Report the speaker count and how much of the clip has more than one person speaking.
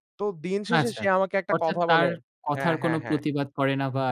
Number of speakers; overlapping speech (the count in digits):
2, about 39%